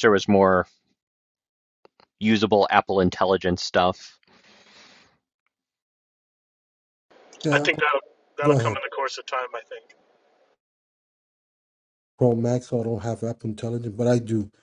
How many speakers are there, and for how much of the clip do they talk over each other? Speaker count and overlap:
three, about 4%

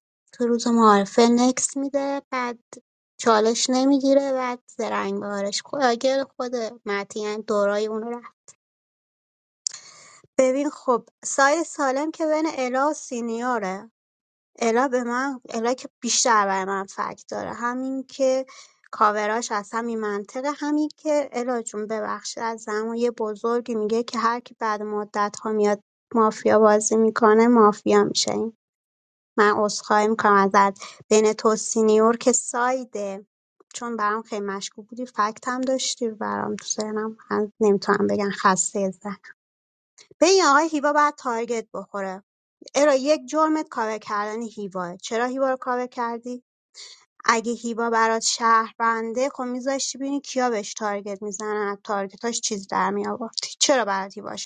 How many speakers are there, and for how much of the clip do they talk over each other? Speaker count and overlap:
one, no overlap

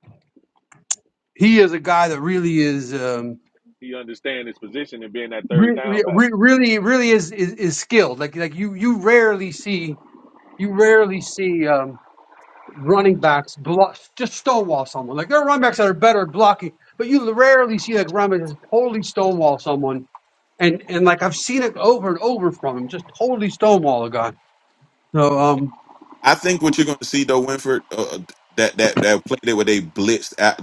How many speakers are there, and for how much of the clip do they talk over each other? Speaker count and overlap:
three, about 2%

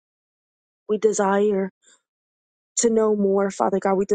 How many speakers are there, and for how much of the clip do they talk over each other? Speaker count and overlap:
one, no overlap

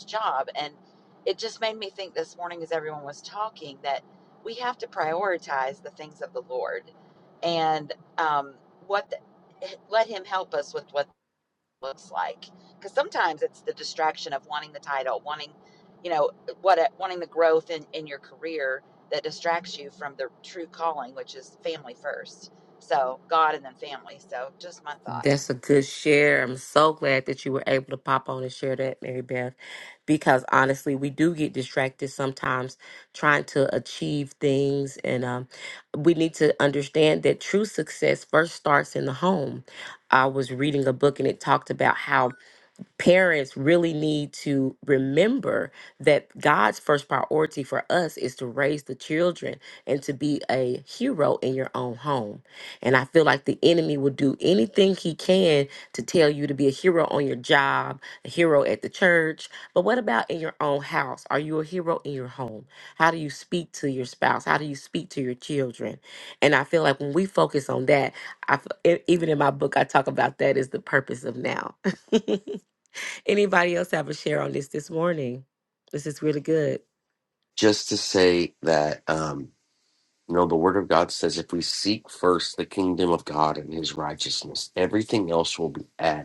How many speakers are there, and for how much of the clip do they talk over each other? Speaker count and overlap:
three, under 1%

